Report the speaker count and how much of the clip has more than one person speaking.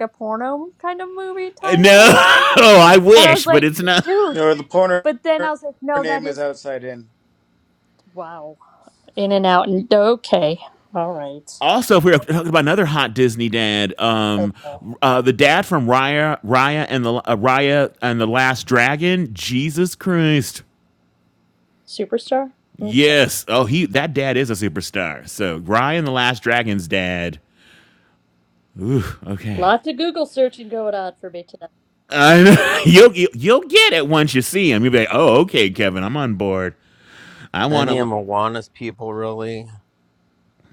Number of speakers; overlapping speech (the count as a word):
four, about 7%